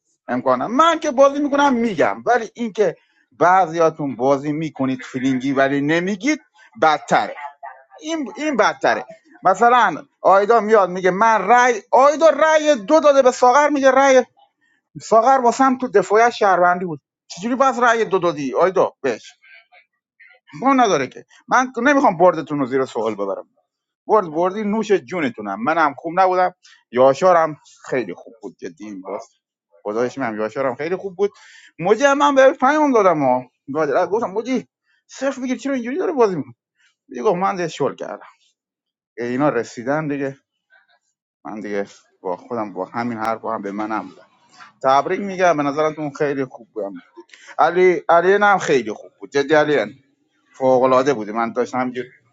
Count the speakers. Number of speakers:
one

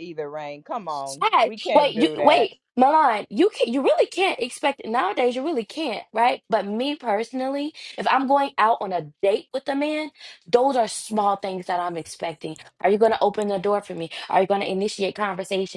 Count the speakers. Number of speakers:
two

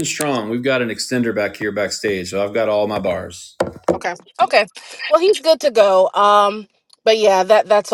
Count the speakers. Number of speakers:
two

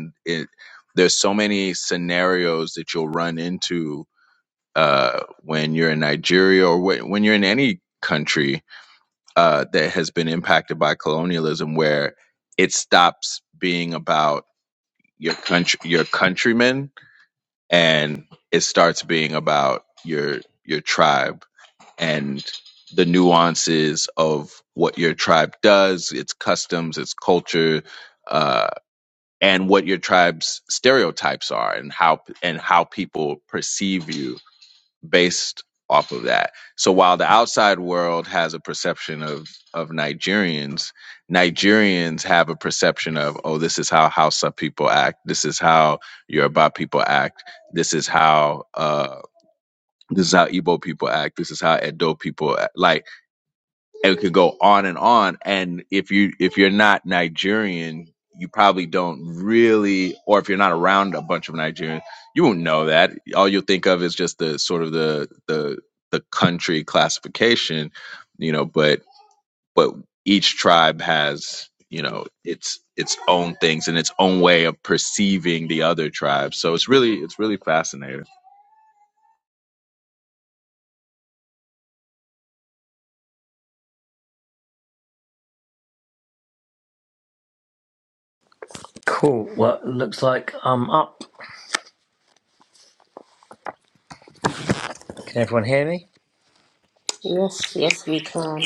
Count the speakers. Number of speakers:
three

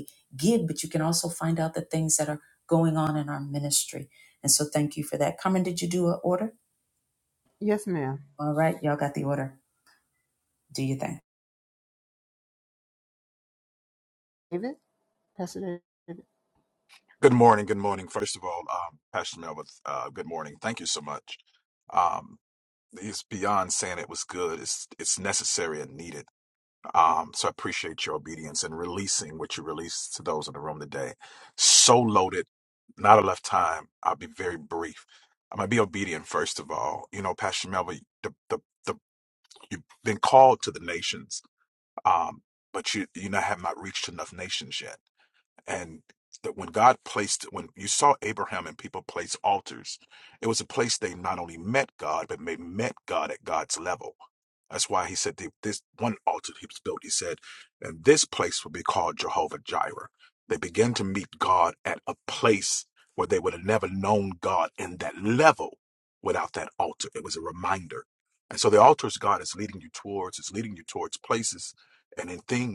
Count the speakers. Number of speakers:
three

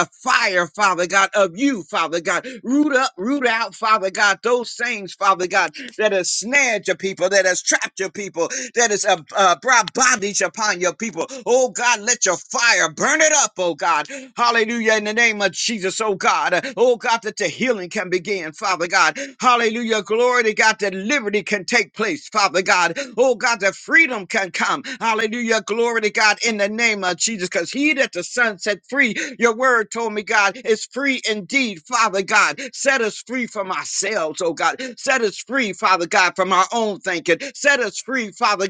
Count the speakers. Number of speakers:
one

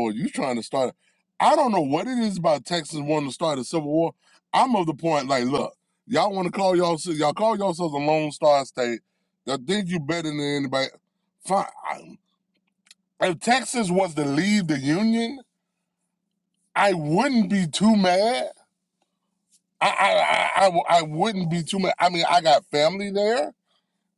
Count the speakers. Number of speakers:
one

